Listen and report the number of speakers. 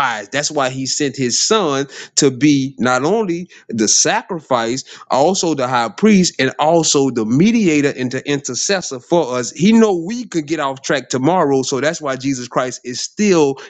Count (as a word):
one